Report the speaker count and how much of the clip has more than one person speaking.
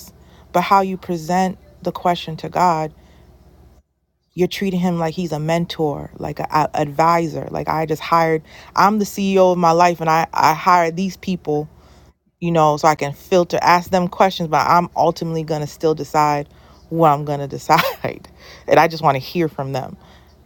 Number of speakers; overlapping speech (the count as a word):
one, no overlap